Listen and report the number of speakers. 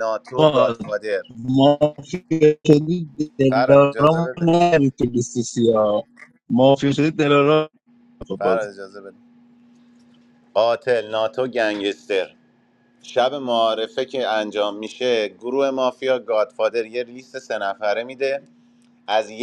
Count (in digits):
2